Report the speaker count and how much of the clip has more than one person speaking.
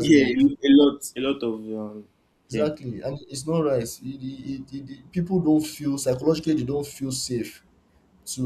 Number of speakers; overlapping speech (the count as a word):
two, about 7%